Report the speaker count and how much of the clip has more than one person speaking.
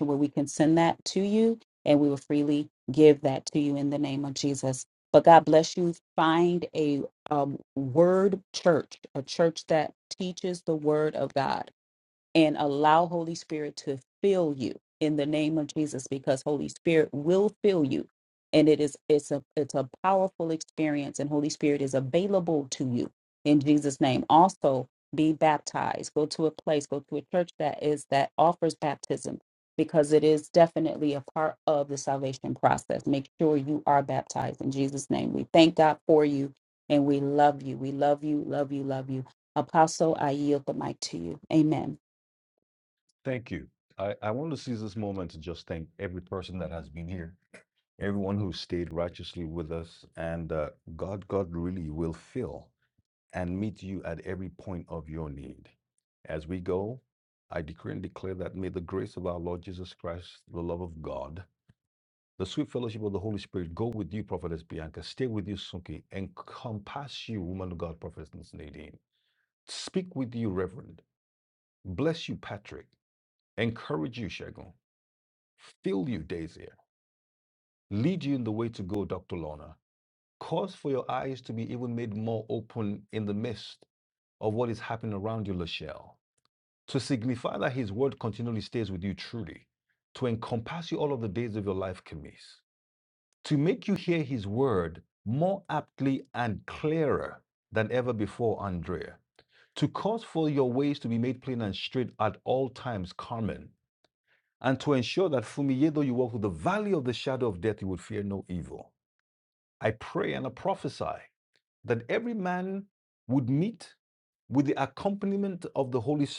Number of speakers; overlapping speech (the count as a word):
two, no overlap